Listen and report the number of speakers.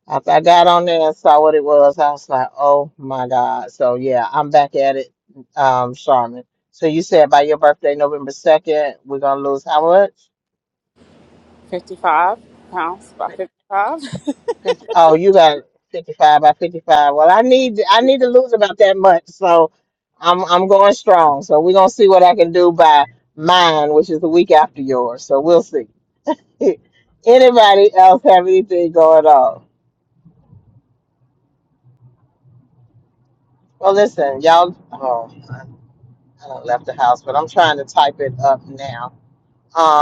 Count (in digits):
2